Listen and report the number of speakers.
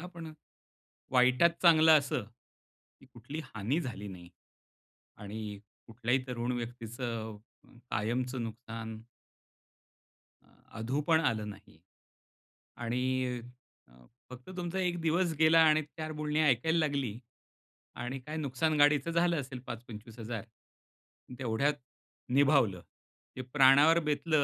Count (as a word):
one